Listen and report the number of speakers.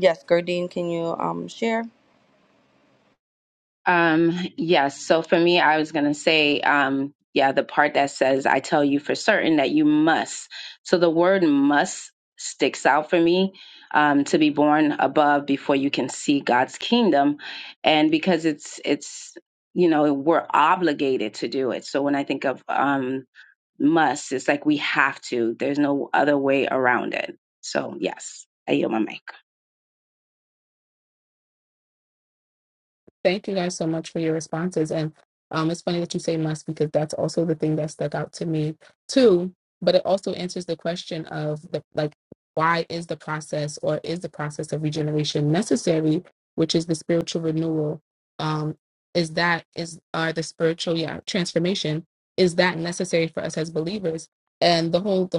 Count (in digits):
3